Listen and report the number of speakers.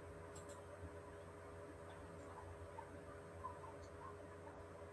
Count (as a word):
zero